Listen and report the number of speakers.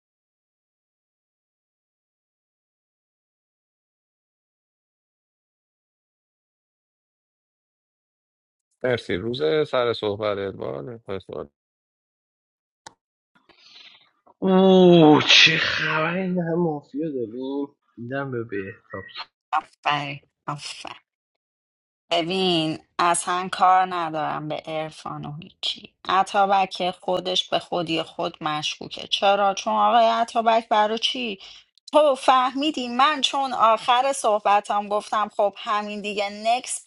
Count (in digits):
3